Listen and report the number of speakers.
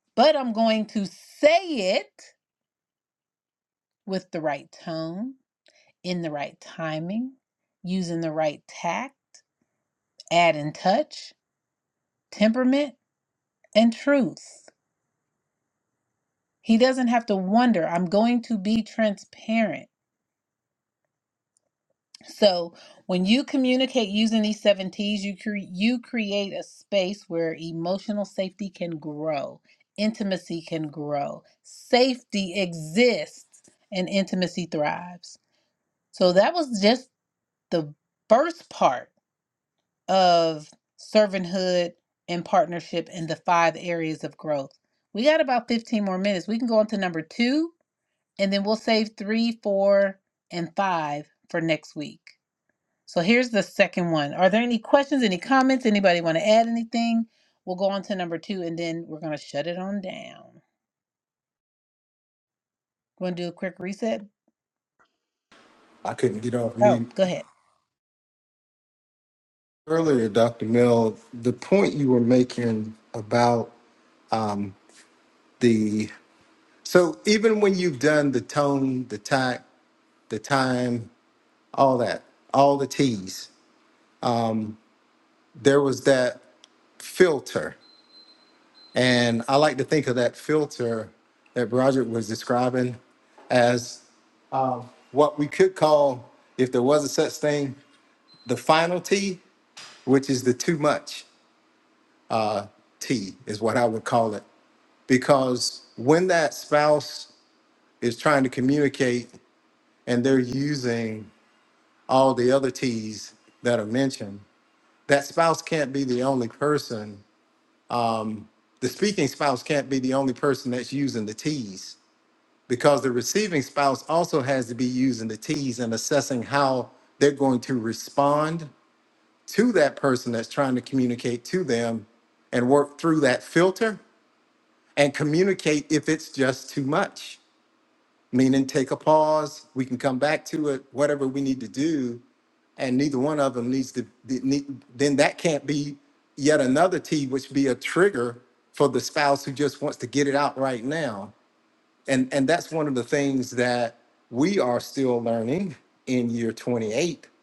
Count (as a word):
two